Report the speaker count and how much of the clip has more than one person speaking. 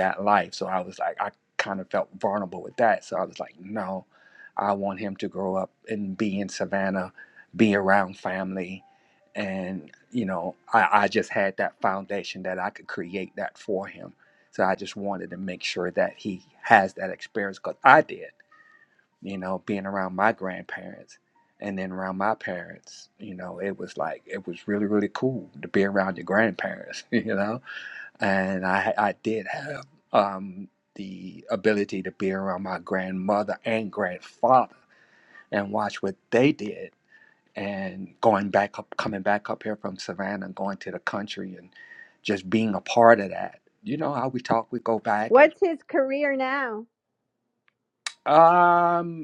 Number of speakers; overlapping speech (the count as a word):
two, under 1%